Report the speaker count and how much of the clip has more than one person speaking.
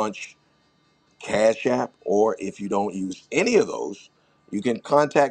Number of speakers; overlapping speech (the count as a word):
one, no overlap